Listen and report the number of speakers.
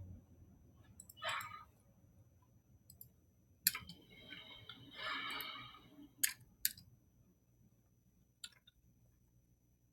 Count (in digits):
0